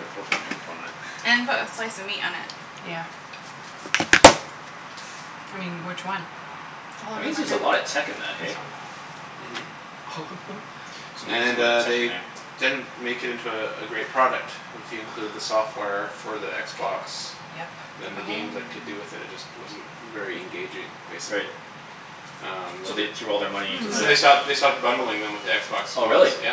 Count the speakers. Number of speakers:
4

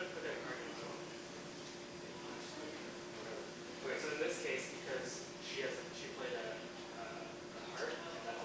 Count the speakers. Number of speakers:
1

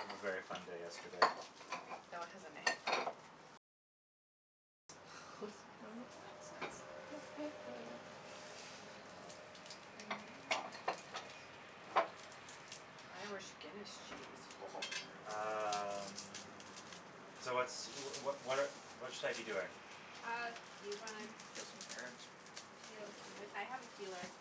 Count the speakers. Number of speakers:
4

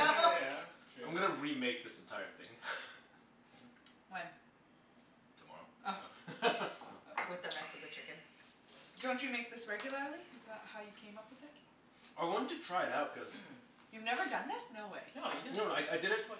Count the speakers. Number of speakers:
4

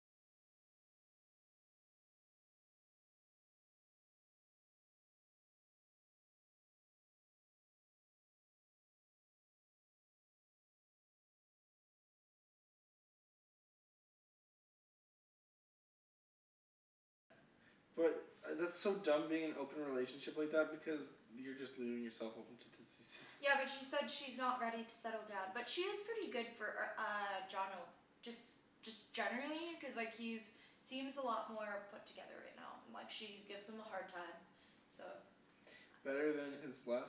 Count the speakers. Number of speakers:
2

